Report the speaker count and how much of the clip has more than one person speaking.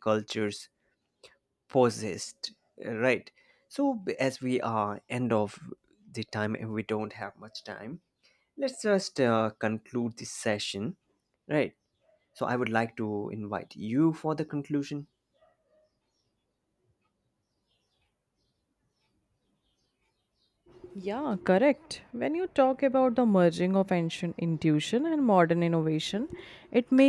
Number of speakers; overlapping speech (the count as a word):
two, no overlap